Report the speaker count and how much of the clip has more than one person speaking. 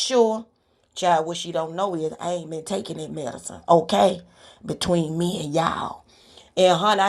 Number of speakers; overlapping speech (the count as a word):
one, no overlap